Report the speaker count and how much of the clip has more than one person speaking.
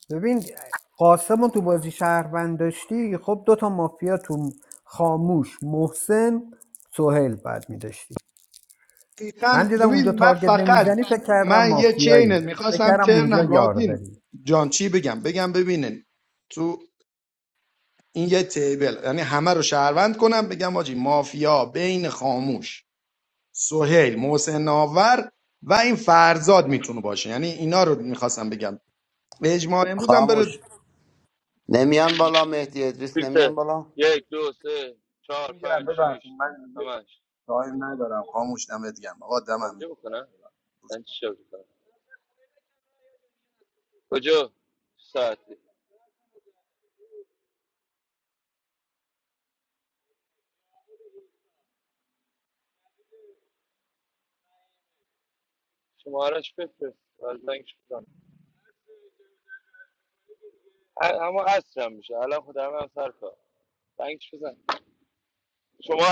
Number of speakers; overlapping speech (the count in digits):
4, about 8%